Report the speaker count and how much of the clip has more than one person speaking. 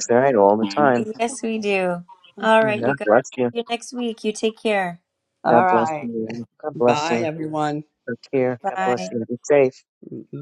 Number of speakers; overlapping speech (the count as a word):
three, about 19%